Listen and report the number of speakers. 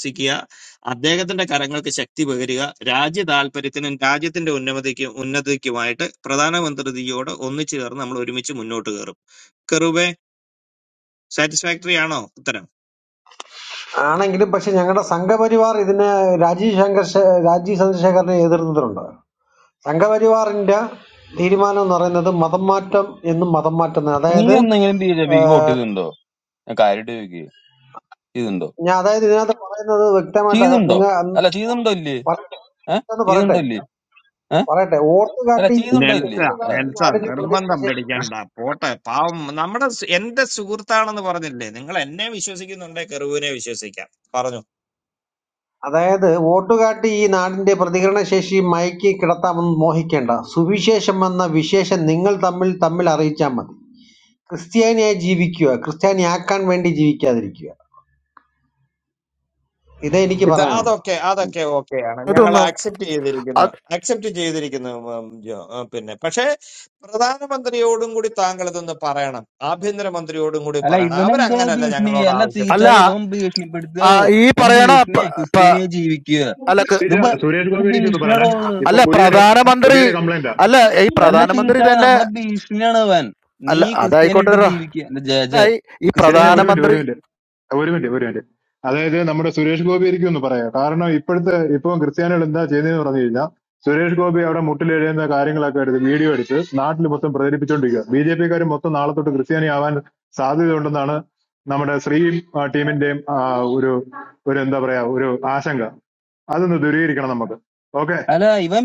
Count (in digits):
5